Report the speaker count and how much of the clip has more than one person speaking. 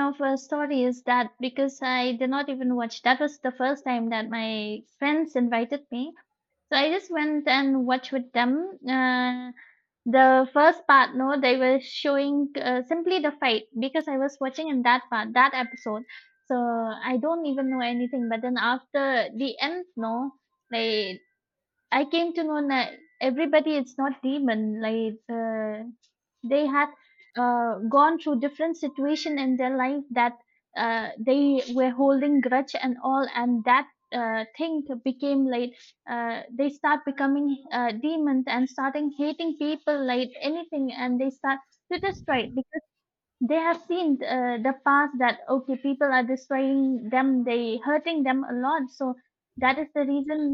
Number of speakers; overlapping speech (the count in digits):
1, no overlap